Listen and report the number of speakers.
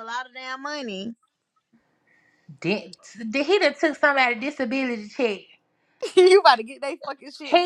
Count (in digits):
3